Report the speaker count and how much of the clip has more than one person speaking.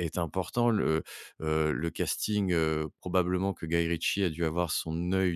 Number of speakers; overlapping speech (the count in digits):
1, no overlap